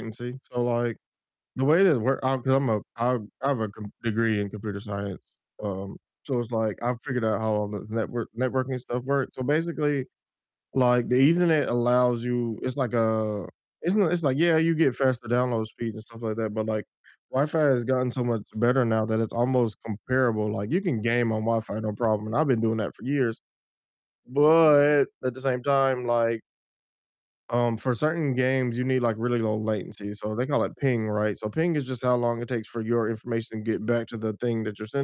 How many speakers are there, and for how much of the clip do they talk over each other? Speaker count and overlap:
one, no overlap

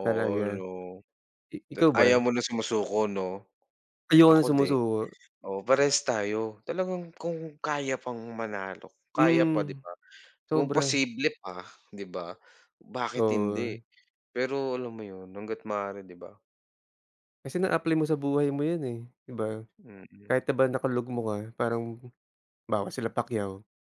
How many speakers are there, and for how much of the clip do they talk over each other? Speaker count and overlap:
two, about 13%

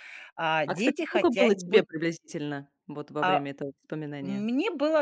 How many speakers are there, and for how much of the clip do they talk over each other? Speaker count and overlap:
two, about 32%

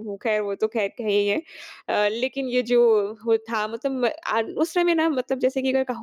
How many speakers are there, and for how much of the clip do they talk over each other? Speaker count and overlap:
one, no overlap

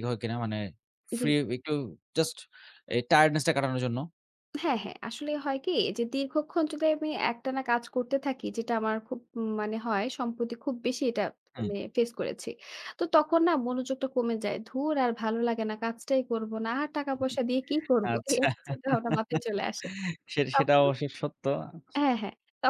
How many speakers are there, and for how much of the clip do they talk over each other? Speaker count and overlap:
two, about 5%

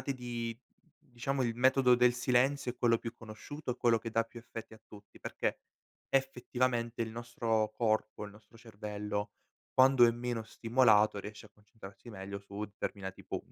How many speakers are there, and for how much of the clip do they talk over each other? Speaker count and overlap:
one, no overlap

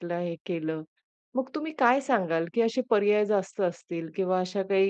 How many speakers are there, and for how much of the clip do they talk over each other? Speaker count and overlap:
one, no overlap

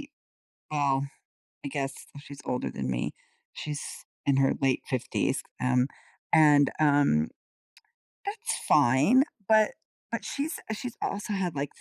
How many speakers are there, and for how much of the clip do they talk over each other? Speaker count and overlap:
one, no overlap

